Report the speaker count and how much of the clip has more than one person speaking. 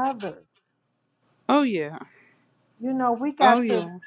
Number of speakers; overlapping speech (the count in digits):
2, about 11%